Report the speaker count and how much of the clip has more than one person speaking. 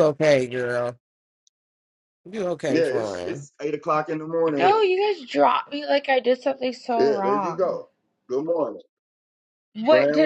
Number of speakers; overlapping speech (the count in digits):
3, about 20%